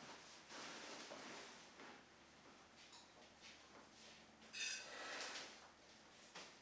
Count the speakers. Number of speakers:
0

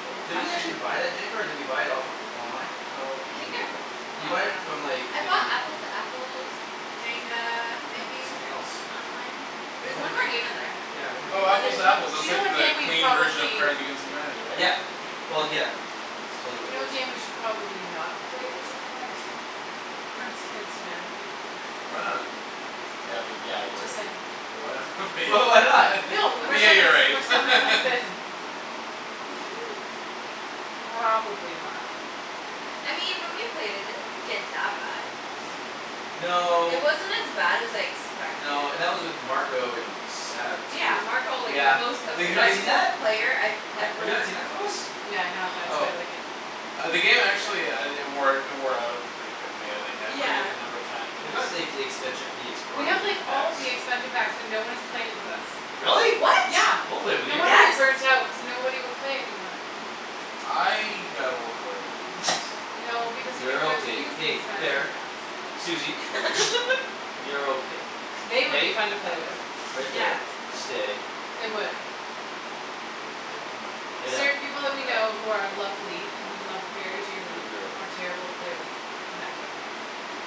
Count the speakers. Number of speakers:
4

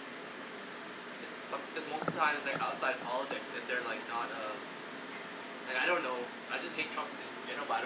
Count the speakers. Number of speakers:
1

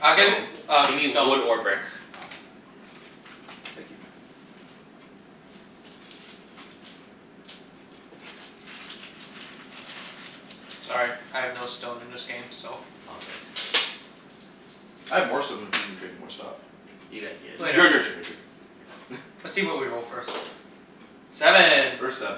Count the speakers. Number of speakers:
3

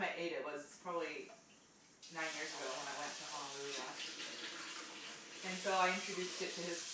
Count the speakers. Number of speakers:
1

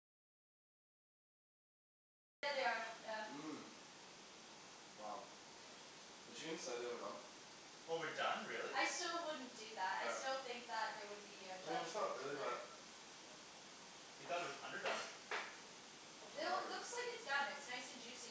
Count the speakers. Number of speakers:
3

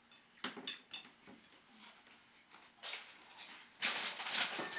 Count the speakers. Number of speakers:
0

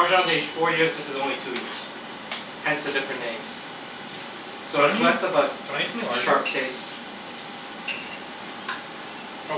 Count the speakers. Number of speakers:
2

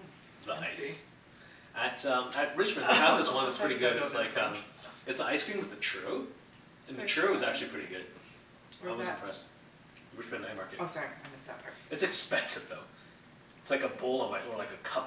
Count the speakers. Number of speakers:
2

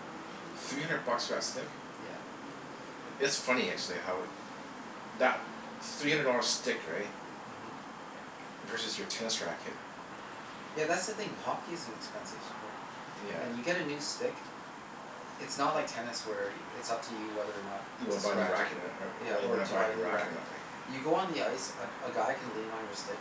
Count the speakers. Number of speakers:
2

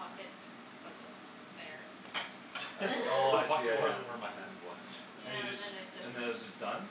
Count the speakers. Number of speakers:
3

